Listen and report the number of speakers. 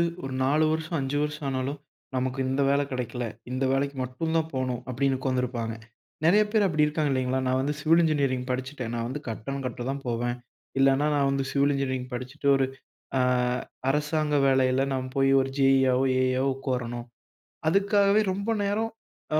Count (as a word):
one